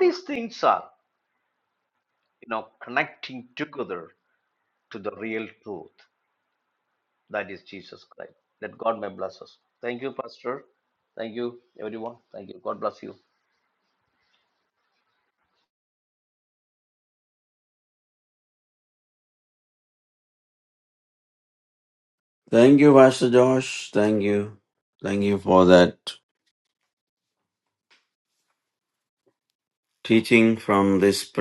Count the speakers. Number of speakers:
2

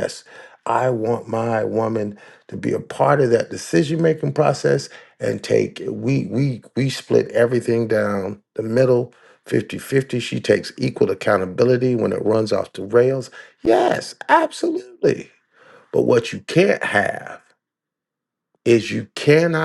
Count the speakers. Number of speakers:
1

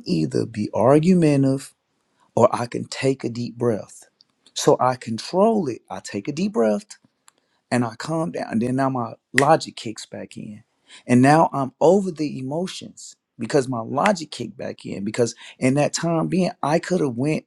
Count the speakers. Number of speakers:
1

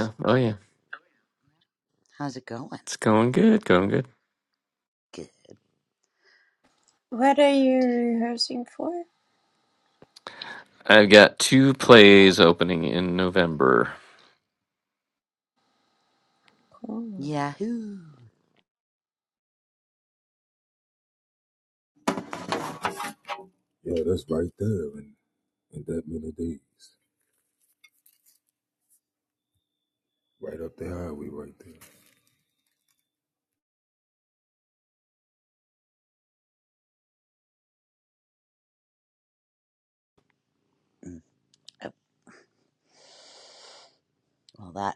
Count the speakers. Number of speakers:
4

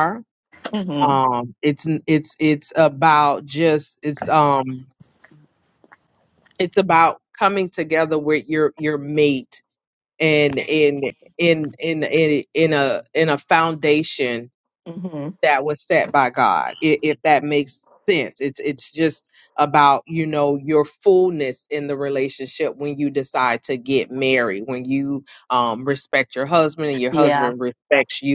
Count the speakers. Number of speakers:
2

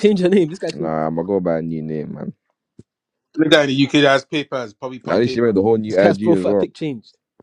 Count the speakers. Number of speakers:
3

